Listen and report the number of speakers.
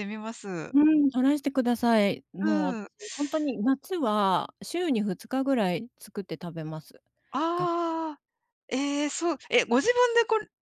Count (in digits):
2